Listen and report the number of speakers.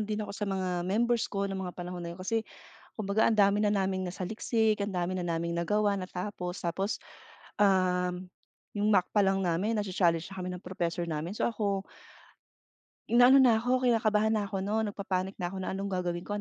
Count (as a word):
one